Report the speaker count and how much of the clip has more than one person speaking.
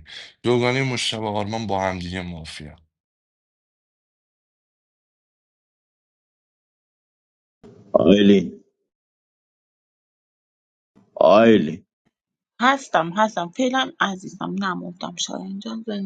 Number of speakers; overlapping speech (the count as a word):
three, no overlap